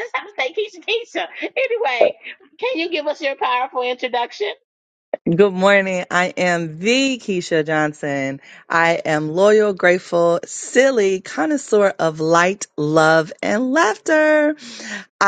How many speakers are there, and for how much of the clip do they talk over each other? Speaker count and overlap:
2, no overlap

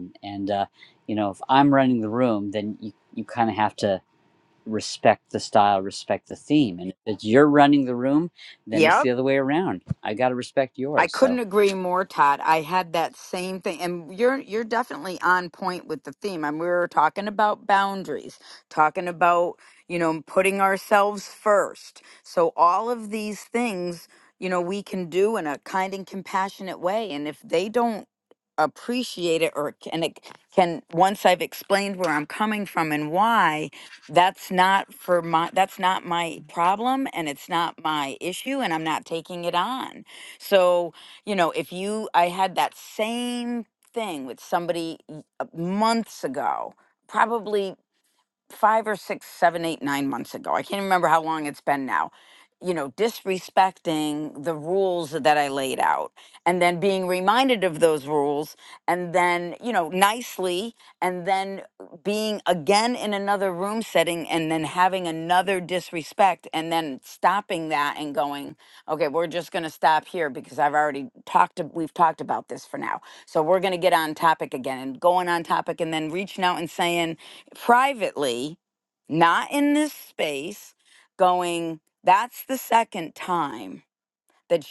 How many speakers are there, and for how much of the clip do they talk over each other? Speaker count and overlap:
2, about 1%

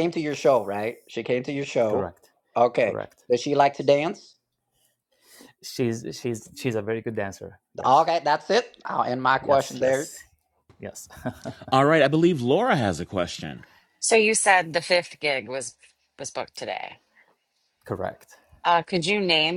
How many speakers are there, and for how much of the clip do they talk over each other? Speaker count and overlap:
4, about 5%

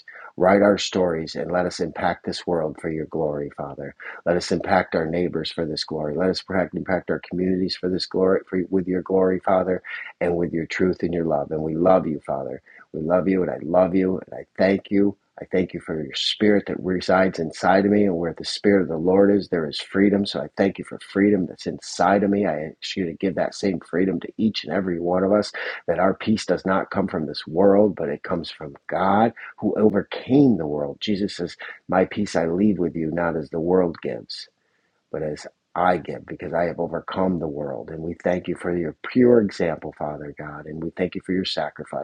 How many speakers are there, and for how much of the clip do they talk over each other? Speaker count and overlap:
1, no overlap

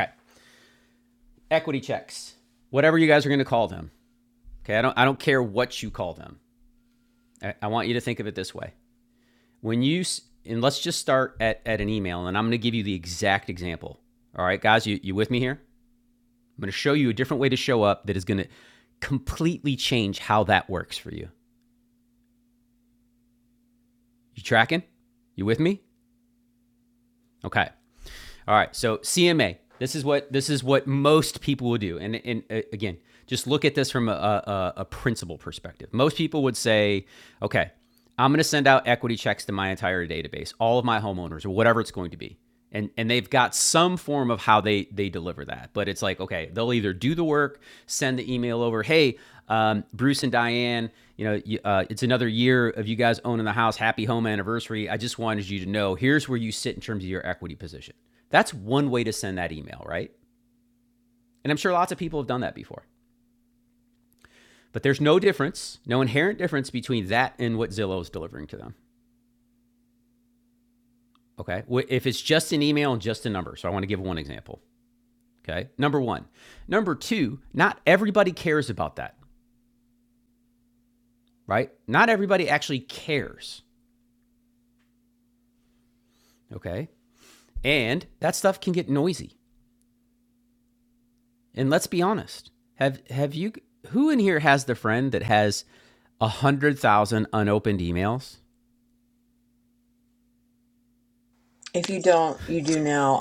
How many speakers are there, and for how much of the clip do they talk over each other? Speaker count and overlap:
2, no overlap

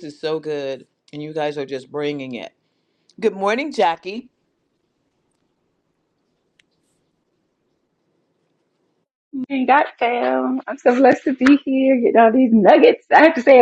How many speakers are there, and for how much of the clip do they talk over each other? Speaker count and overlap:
2, no overlap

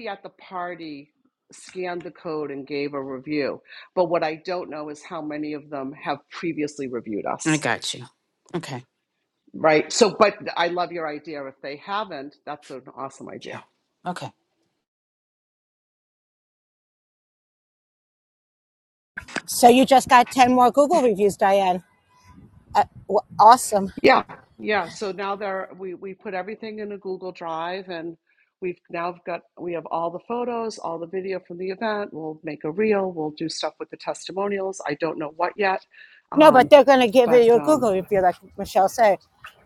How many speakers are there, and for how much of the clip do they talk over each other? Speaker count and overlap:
3, about 3%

